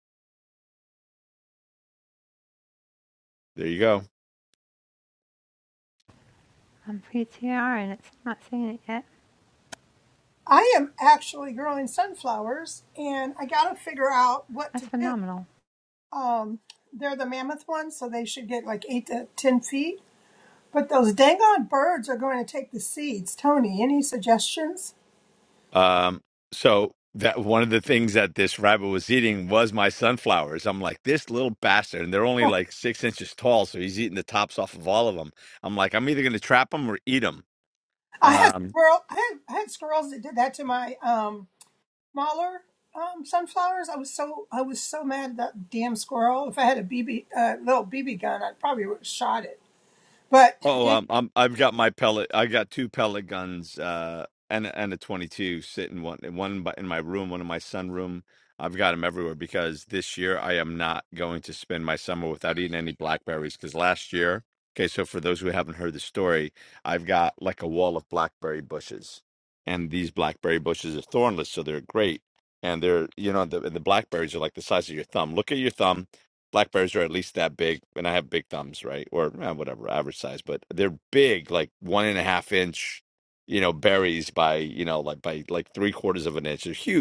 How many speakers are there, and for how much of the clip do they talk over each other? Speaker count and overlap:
3, about 1%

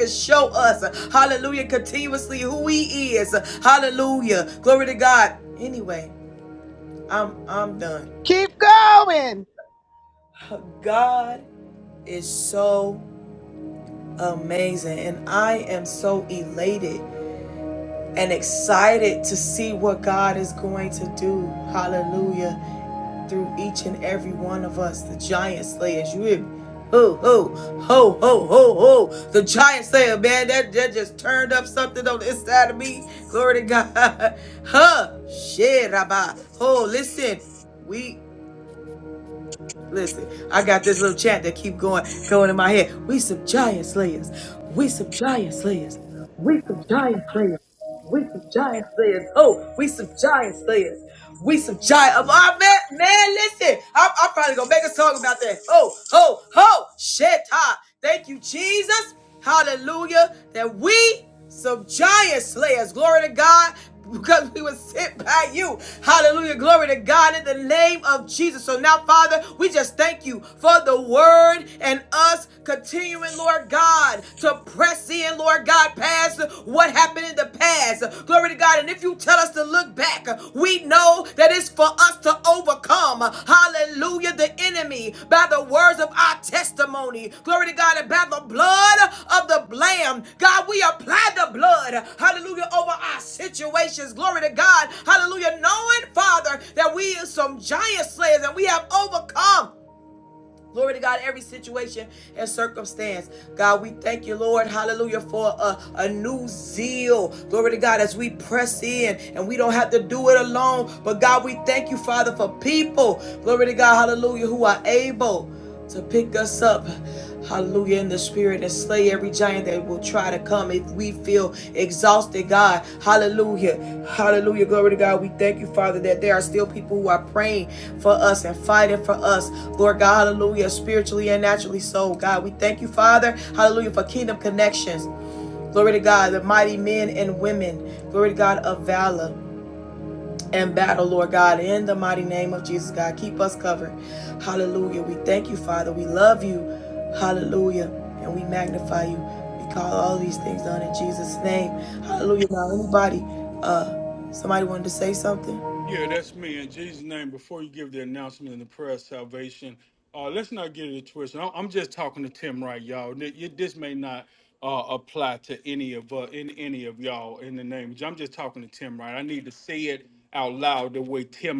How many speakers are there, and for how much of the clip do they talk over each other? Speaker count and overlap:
3, under 1%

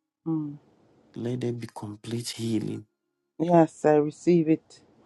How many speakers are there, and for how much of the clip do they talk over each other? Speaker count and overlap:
2, no overlap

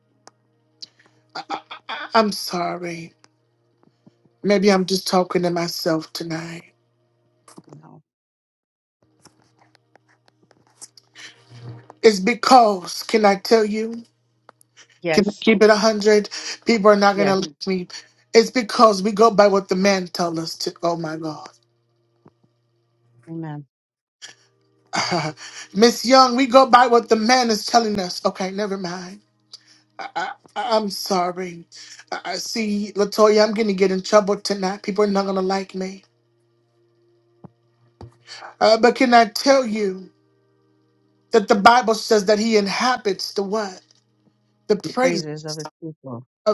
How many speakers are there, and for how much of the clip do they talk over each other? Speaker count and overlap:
2, about 1%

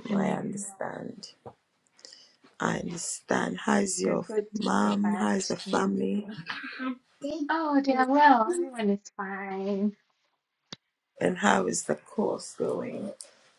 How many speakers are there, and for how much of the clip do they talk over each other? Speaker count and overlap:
2, about 12%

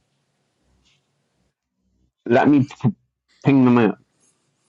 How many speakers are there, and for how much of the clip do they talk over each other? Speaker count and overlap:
1, no overlap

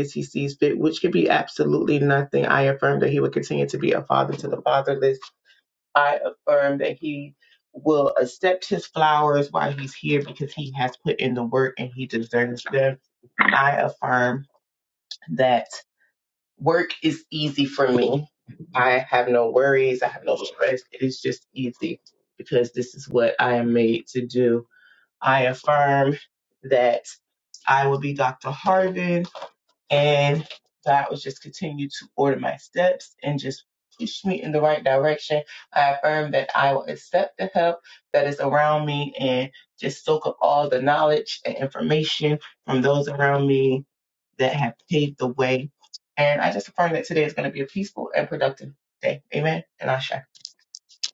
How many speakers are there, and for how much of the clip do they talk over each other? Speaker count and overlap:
1, no overlap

